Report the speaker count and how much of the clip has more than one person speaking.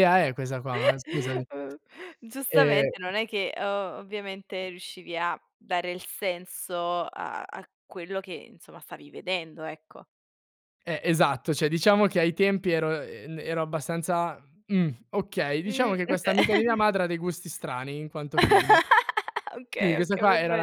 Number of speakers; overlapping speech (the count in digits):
2, about 10%